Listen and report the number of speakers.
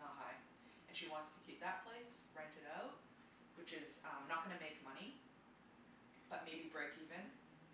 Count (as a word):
one